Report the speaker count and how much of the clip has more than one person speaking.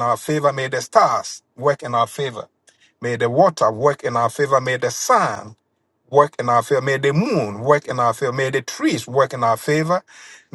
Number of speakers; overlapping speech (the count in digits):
1, no overlap